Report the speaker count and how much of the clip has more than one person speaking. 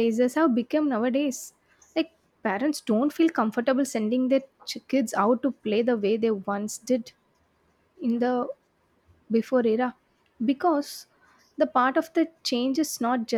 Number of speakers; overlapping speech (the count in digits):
1, no overlap